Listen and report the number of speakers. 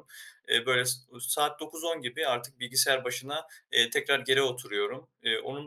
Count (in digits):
1